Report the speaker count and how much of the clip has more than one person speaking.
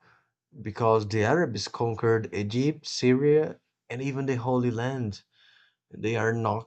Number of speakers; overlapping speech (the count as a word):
one, no overlap